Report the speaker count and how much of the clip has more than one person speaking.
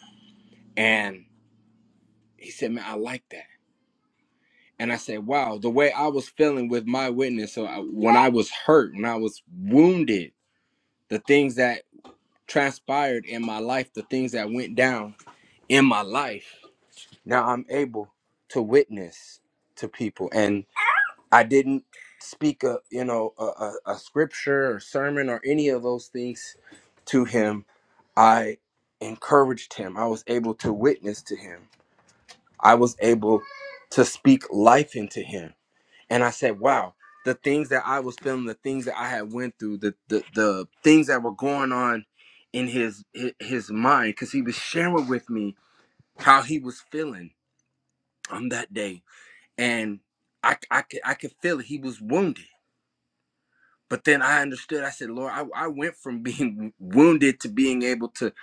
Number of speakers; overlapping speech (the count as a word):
one, no overlap